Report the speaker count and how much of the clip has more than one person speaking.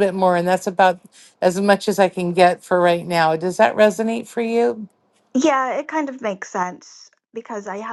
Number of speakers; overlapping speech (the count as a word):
two, no overlap